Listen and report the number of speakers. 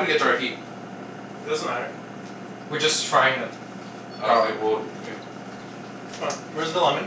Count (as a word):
three